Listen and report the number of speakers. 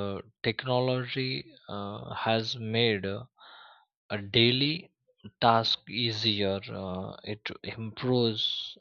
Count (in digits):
1